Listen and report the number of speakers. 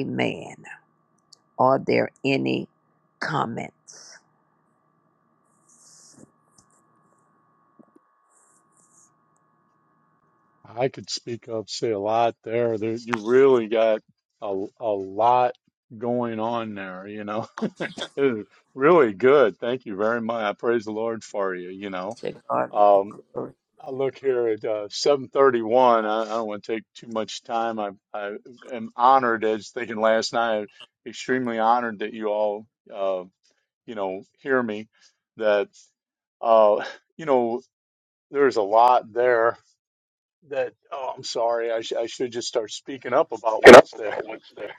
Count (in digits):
2